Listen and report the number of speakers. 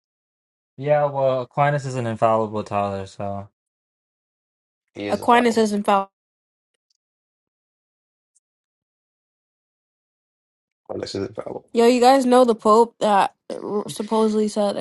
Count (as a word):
three